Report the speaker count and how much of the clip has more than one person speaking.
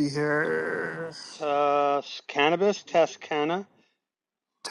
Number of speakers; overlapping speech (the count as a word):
two, no overlap